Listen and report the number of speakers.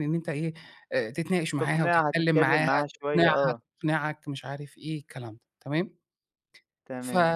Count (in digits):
2